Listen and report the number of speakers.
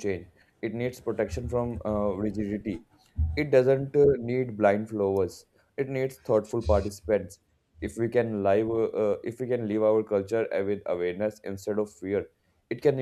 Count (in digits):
1